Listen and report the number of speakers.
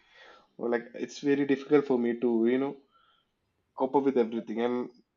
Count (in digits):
1